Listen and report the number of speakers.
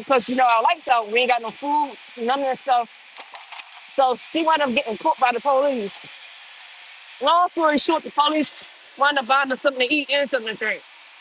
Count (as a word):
one